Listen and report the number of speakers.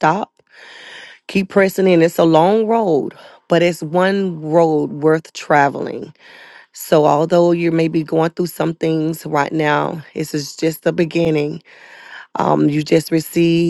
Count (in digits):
1